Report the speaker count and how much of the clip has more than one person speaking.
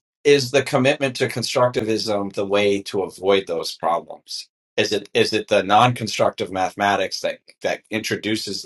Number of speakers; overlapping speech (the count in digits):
1, no overlap